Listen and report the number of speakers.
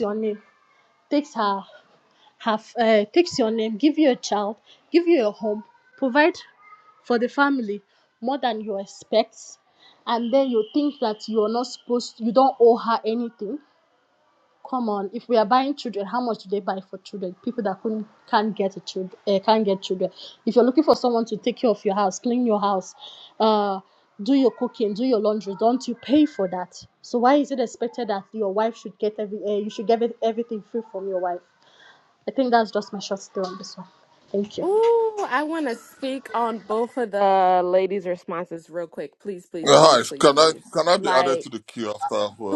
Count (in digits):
3